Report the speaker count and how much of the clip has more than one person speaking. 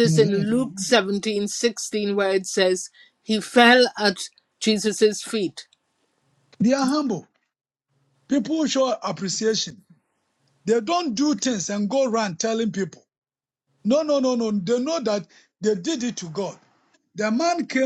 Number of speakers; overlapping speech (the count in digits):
2, about 2%